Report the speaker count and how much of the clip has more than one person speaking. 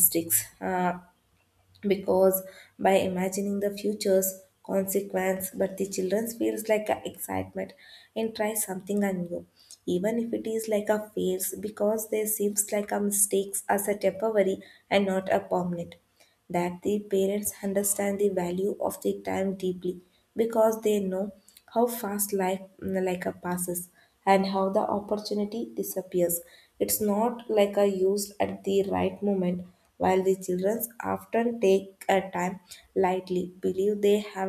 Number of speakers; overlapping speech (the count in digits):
1, no overlap